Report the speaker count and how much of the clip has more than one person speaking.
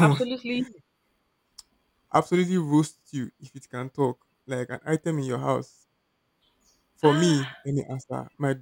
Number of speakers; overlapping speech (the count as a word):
two, about 9%